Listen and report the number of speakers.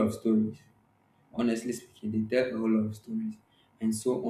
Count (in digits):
1